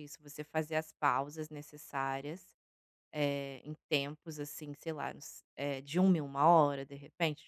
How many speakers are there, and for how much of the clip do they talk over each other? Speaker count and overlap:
1, no overlap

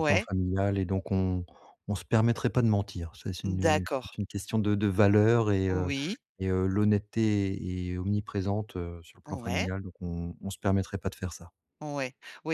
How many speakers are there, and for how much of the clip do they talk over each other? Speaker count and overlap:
2, about 13%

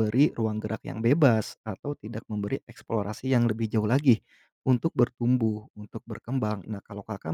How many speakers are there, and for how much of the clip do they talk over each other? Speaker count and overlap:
1, no overlap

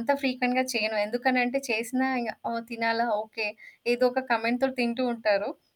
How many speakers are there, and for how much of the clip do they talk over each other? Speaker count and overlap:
1, no overlap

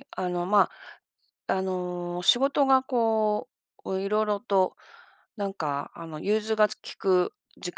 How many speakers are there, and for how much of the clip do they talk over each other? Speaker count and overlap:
1, no overlap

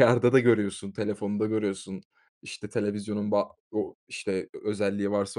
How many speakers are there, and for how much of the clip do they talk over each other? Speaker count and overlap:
1, no overlap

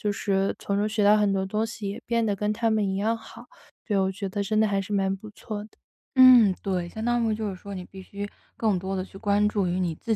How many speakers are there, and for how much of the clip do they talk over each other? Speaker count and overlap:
2, no overlap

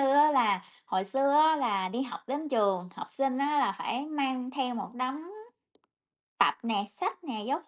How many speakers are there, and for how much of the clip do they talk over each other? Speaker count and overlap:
1, no overlap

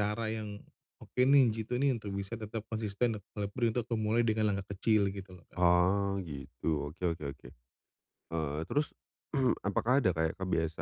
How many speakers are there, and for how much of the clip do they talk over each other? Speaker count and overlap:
2, about 1%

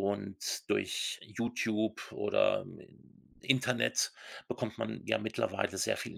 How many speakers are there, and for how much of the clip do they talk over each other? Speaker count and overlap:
1, no overlap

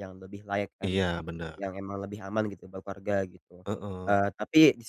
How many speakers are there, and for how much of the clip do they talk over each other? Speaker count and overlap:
2, about 9%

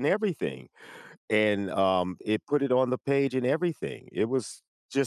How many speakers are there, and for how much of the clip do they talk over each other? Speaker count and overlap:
1, no overlap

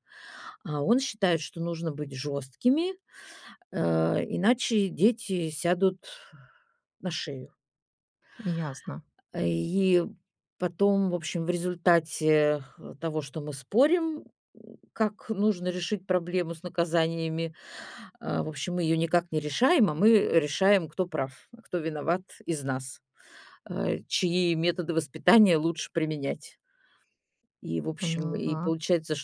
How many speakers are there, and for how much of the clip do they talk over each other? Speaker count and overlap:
2, about 2%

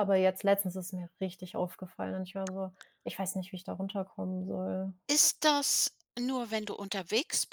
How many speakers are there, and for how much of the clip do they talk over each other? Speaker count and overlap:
2, no overlap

